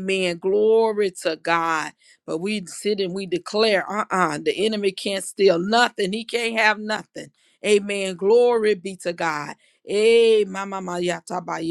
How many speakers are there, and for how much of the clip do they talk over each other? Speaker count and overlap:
1, no overlap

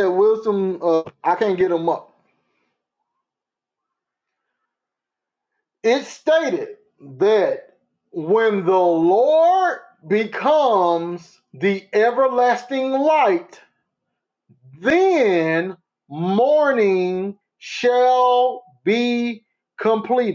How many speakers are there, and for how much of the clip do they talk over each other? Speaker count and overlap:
1, no overlap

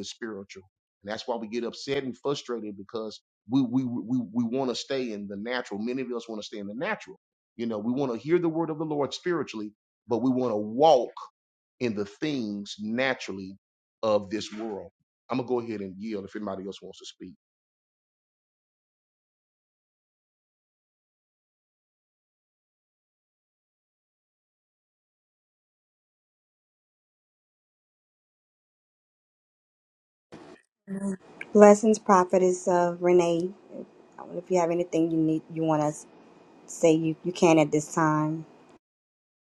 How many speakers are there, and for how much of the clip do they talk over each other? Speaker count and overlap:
2, no overlap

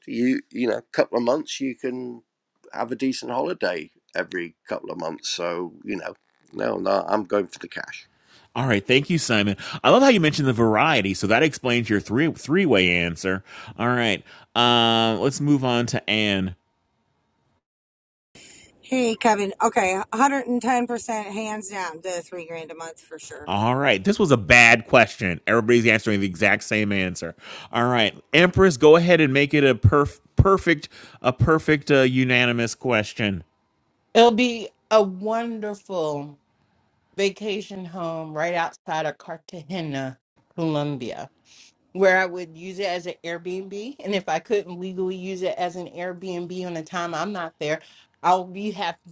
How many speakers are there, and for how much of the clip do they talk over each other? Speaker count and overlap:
4, no overlap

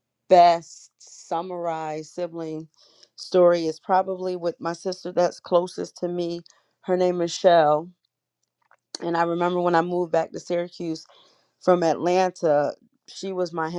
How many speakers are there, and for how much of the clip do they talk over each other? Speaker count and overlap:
1, no overlap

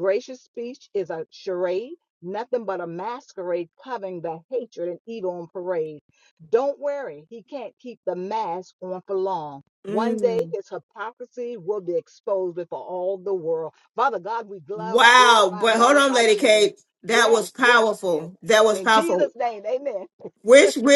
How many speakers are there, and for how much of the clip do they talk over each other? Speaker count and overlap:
2, about 17%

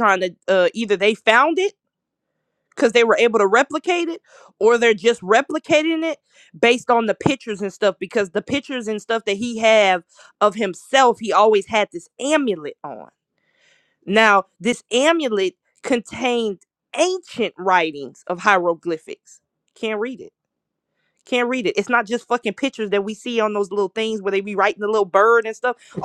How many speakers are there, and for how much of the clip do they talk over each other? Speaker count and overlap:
1, no overlap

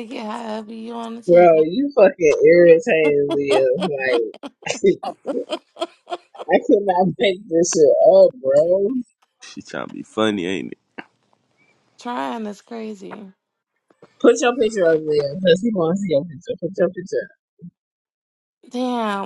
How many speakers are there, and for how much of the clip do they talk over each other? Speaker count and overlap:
3, about 2%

